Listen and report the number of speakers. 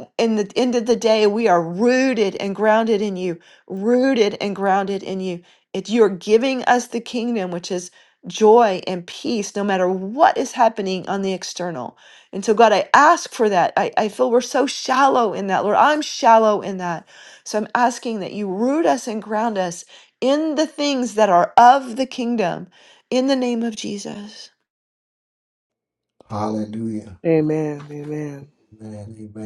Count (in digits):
3